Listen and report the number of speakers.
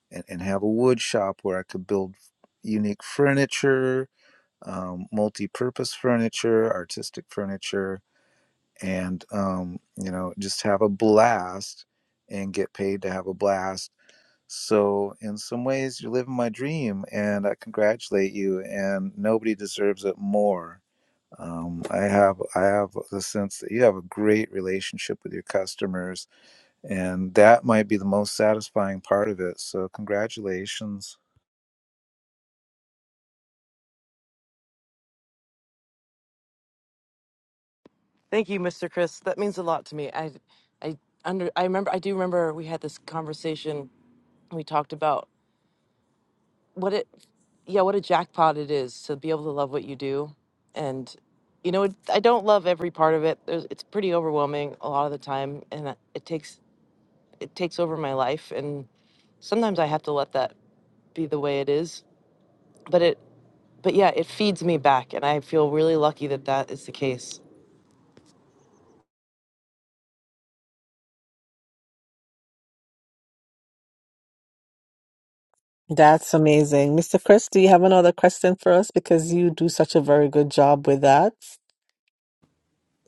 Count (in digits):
3